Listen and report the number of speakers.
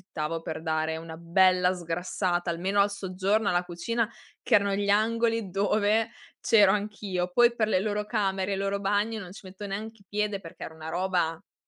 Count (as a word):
one